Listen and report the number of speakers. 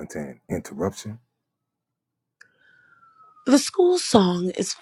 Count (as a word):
two